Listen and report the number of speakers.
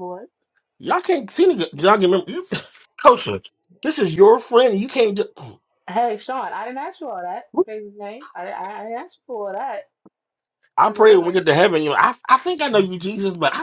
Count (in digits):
2